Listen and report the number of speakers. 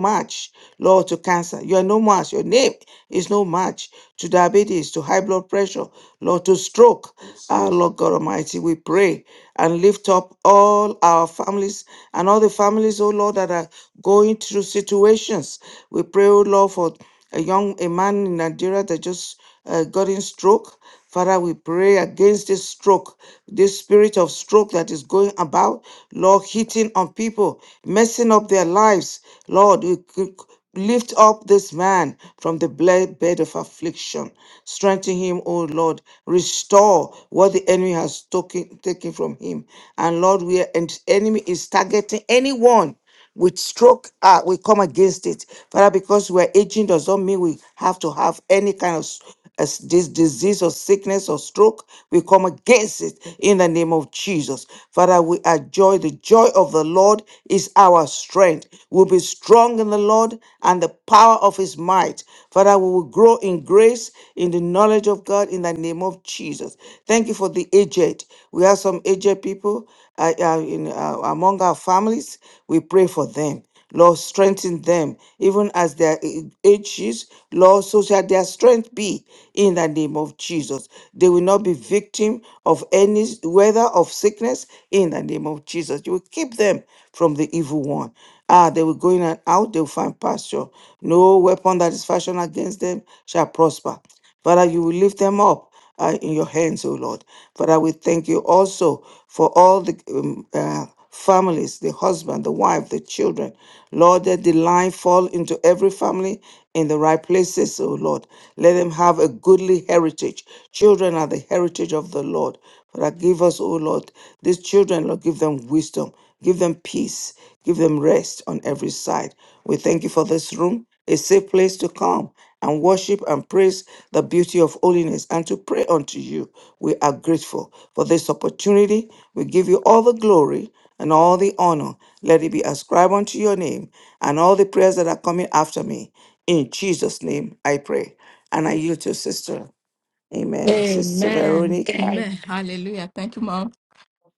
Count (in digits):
2